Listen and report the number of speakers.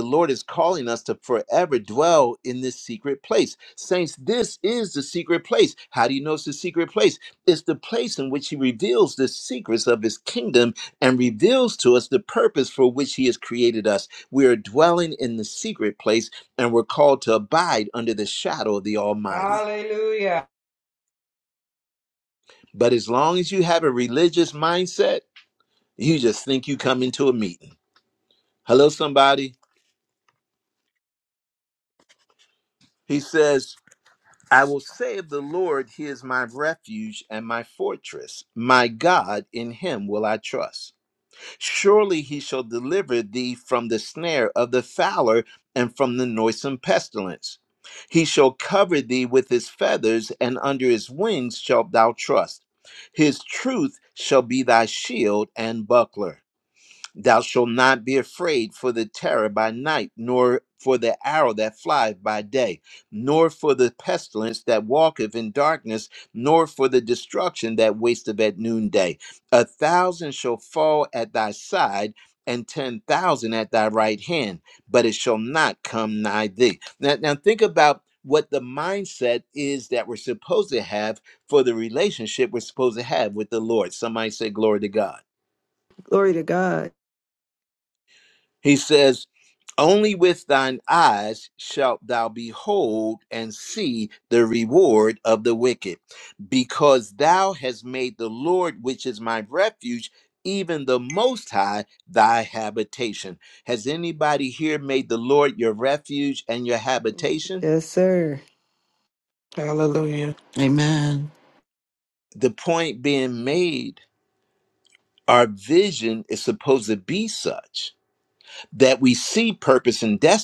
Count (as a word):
four